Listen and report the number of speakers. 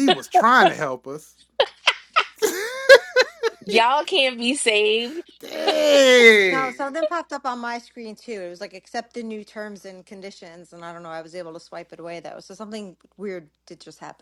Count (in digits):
3